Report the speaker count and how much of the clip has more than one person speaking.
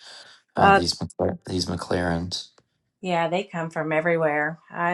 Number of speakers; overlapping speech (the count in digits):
2, about 4%